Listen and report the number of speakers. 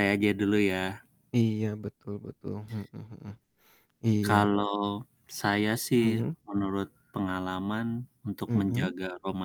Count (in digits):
2